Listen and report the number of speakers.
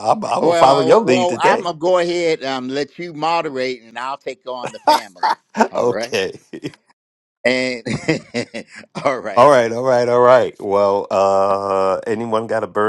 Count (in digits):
2